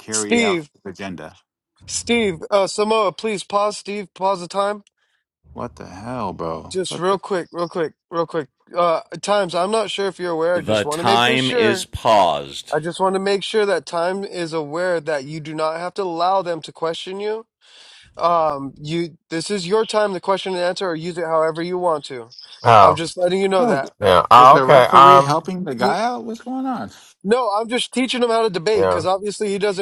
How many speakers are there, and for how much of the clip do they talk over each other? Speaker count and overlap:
4, about 13%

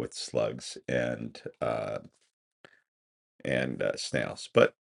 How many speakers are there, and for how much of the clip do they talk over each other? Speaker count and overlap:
1, no overlap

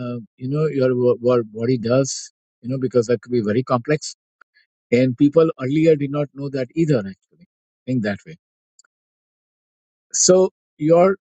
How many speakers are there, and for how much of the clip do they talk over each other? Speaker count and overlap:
1, no overlap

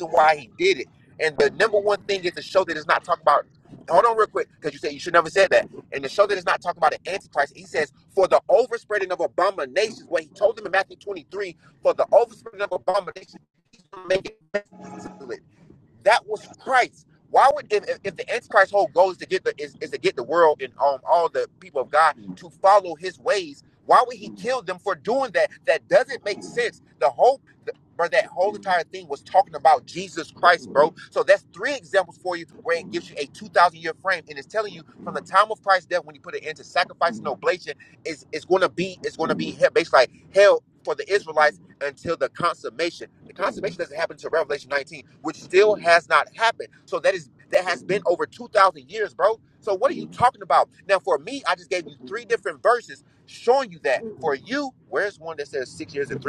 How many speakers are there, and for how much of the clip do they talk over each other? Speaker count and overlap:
1, no overlap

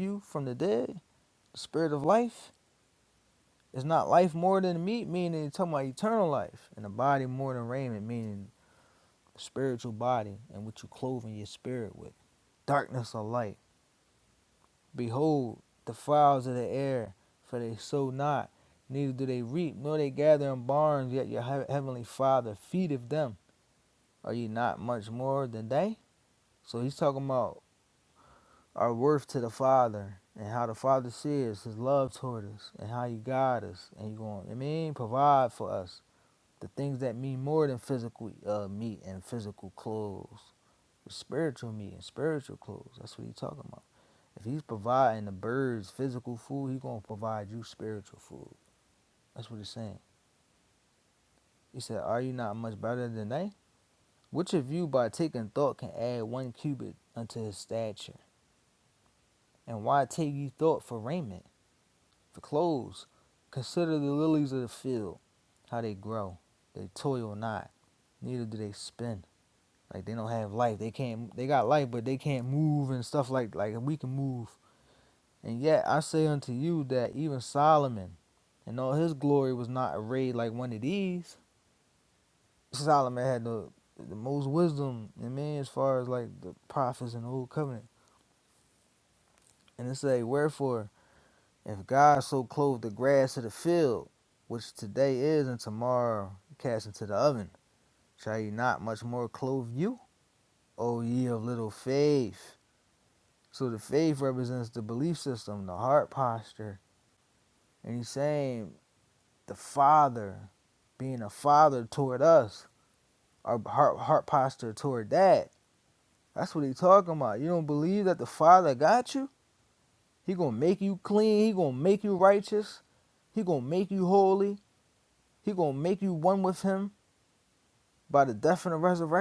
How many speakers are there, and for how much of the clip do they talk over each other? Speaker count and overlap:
1, no overlap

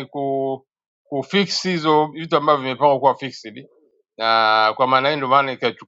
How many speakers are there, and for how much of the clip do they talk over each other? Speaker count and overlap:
1, no overlap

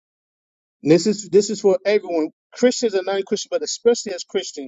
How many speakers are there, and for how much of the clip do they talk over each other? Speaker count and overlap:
1, no overlap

